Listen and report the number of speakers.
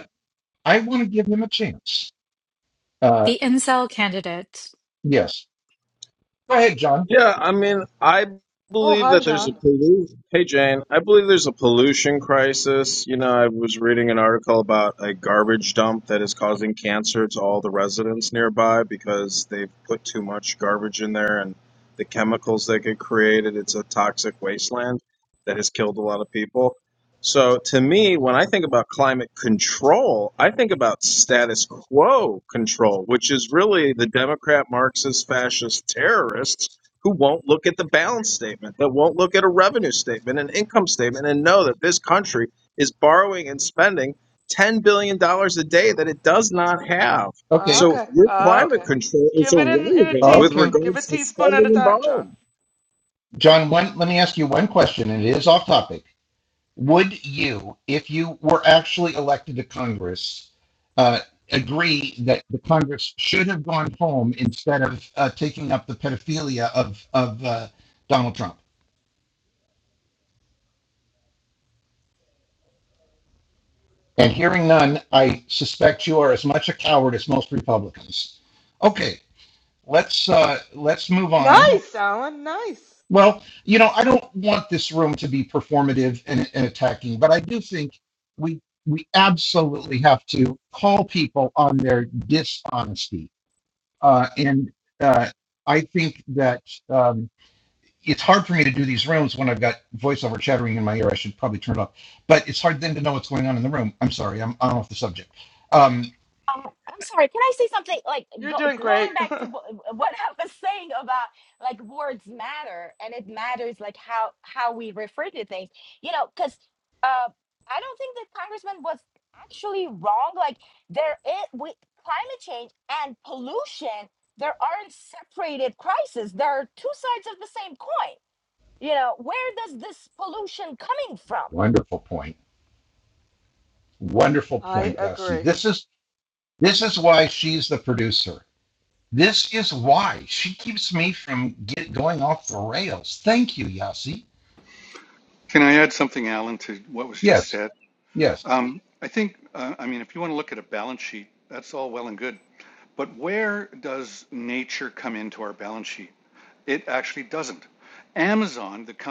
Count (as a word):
six